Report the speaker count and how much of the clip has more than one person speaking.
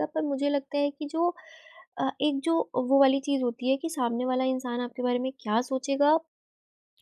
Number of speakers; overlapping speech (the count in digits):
1, no overlap